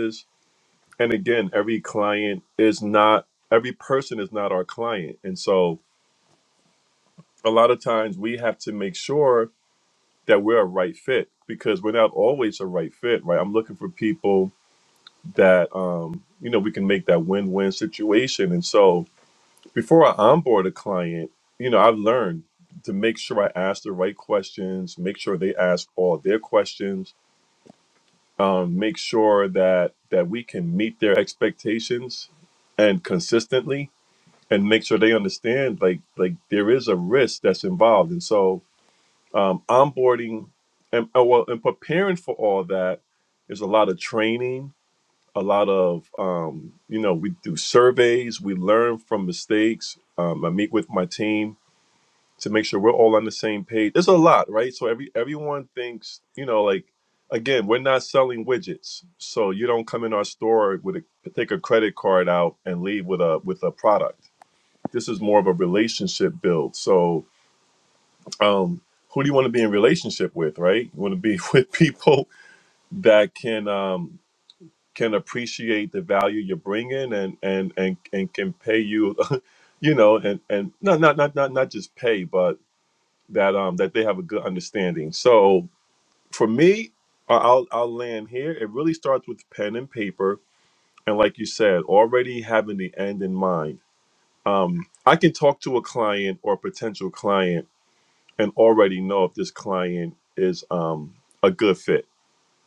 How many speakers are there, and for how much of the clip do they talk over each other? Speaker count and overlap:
1, no overlap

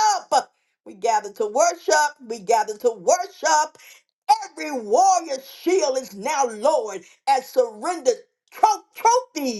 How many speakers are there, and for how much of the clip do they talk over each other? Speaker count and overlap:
1, no overlap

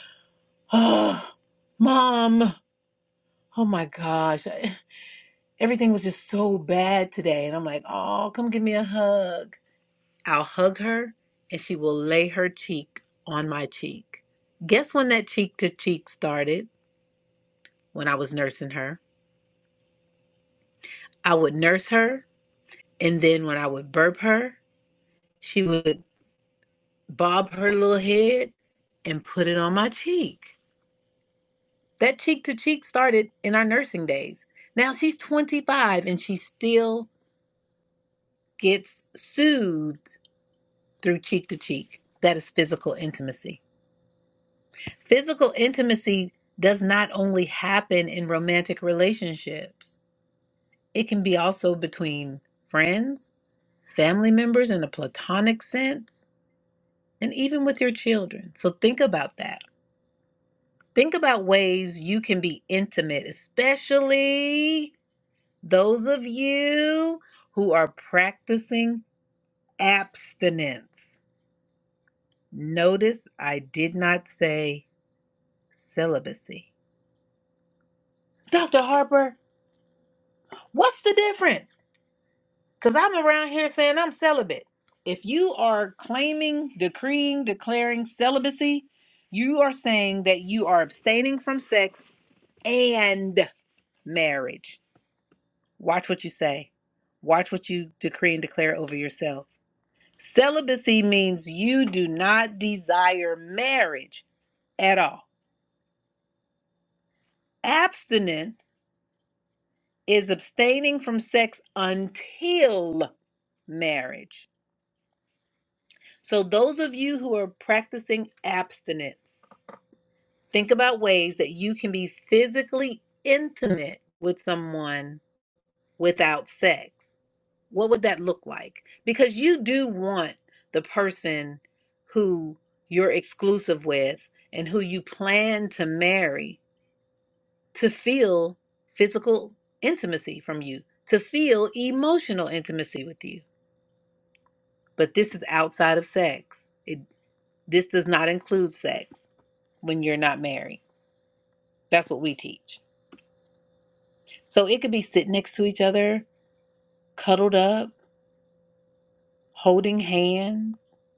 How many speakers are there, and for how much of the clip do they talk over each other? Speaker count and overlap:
1, no overlap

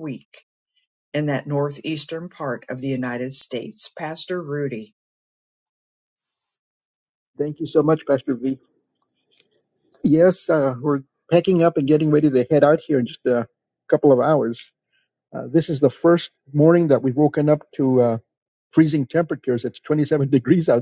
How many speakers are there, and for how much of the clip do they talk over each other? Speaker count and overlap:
2, no overlap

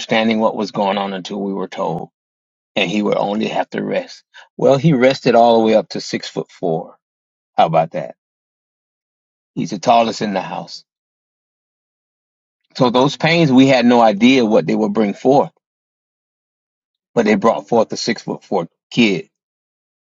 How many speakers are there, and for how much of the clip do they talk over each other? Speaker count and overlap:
1, no overlap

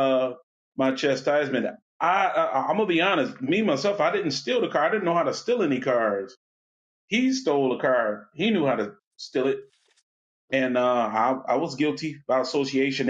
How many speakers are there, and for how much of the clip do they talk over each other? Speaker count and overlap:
1, no overlap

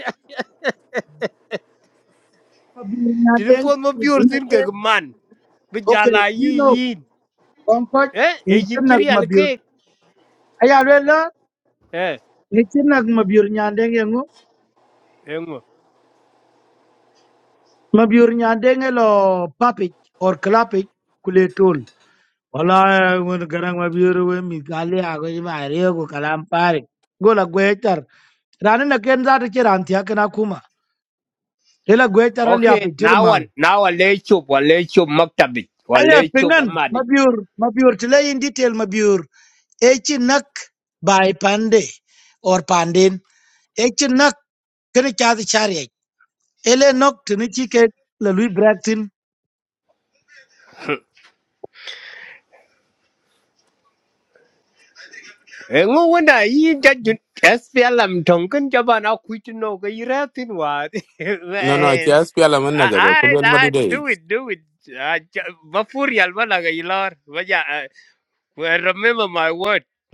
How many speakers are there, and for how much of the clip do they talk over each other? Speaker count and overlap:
3, about 10%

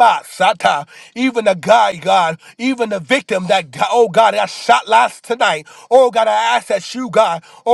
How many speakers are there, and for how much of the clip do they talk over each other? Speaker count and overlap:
1, no overlap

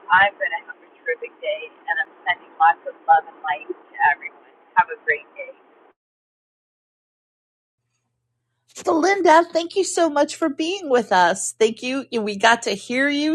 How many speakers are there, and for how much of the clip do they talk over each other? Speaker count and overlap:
2, no overlap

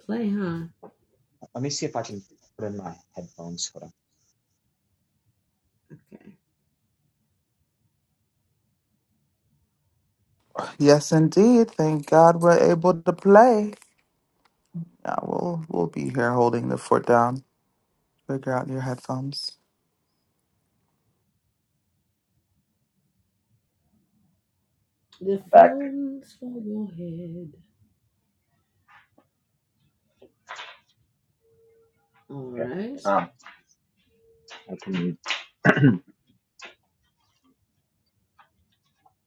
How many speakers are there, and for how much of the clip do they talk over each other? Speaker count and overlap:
3, about 1%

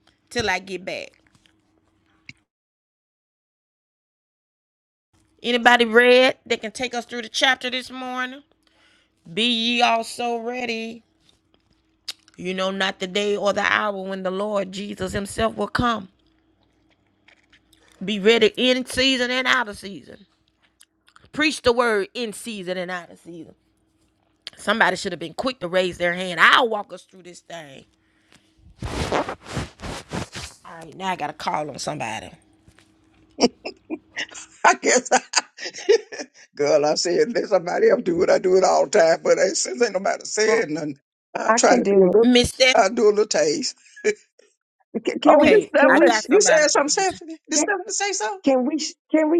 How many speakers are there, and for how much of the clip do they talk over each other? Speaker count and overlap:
3, about 6%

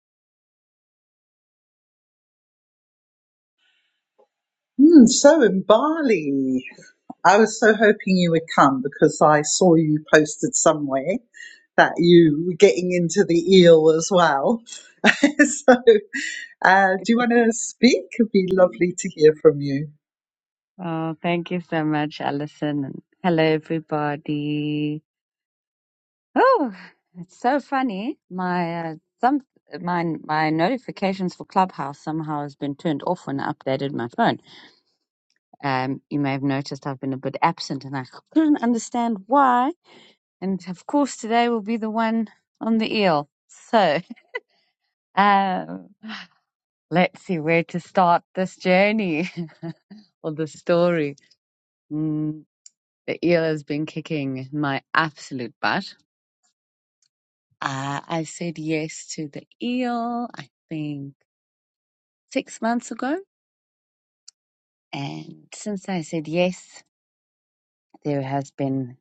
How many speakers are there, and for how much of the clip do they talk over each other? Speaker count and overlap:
2, no overlap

